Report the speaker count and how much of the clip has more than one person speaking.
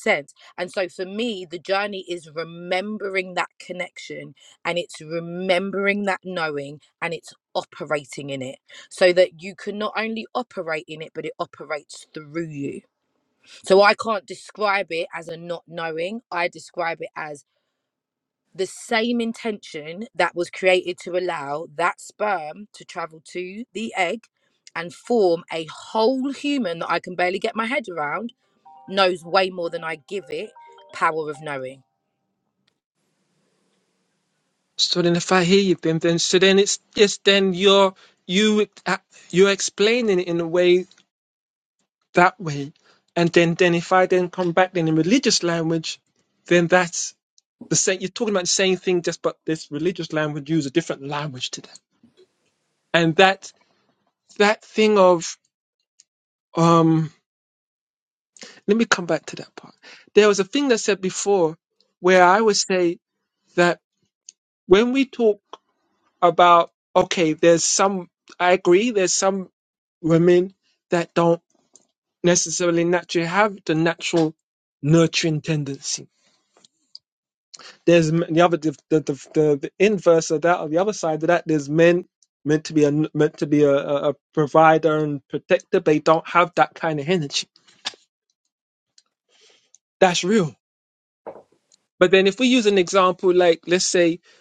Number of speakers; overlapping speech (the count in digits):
2, no overlap